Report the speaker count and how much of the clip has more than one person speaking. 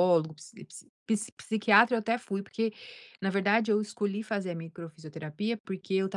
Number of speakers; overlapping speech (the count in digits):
1, no overlap